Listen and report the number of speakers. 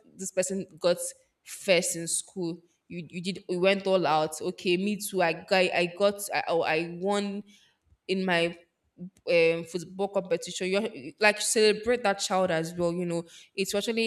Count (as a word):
one